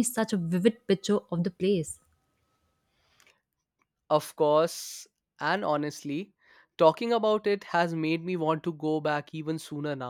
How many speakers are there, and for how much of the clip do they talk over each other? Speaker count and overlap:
2, no overlap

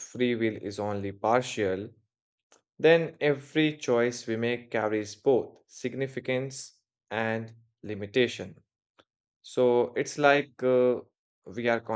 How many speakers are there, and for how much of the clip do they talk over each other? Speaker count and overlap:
1, no overlap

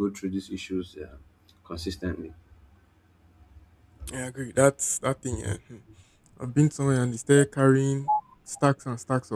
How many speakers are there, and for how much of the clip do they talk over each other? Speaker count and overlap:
2, no overlap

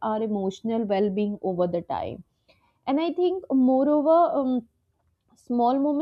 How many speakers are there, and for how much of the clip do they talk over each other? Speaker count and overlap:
1, no overlap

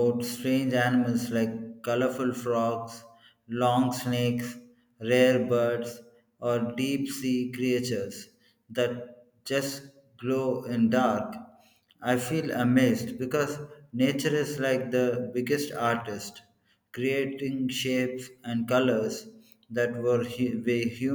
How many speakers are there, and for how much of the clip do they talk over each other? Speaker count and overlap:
1, no overlap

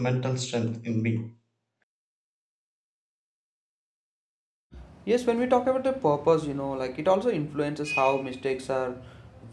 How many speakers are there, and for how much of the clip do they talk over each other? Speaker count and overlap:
2, no overlap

